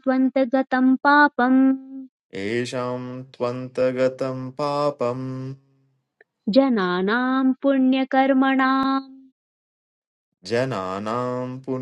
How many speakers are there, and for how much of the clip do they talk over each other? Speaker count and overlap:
2, no overlap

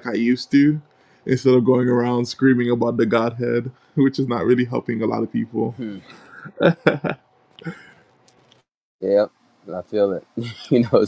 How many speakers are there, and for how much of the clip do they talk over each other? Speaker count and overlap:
2, no overlap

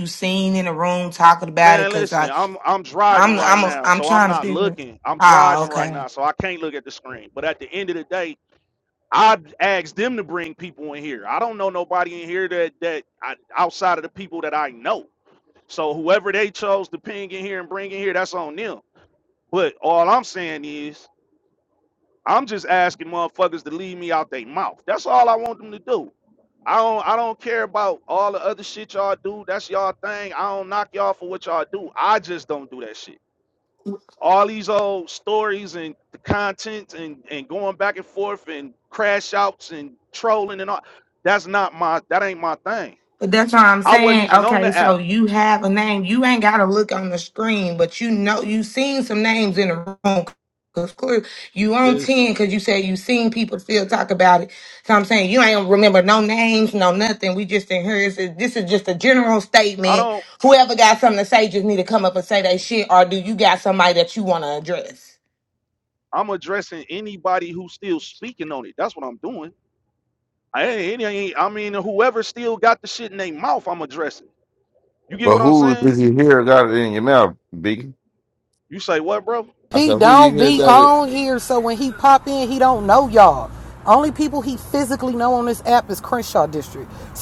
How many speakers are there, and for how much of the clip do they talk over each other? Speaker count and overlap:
4, about 8%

